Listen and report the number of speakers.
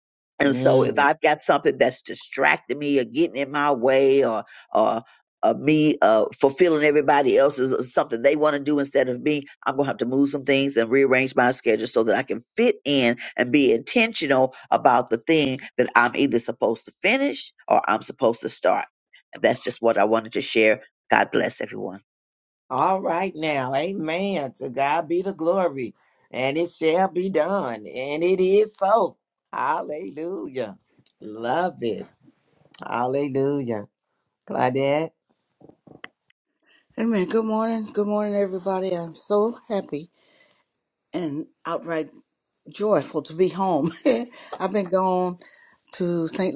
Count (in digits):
3